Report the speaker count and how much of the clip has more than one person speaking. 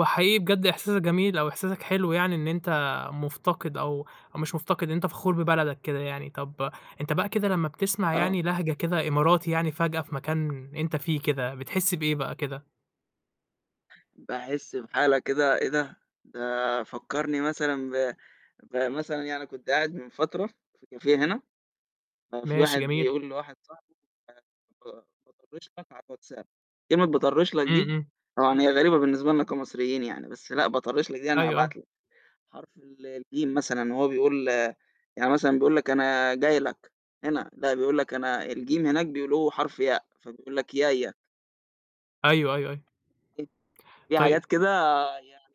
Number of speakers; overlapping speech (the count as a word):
two, about 4%